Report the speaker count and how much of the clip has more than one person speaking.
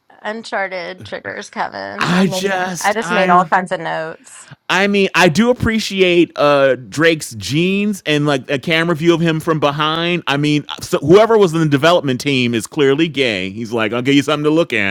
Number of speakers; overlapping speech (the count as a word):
two, about 10%